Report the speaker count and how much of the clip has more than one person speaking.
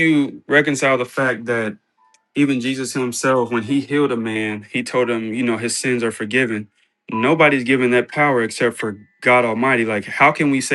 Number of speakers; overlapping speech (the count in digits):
1, no overlap